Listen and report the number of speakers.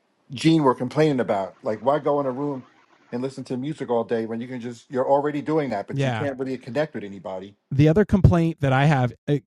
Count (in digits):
2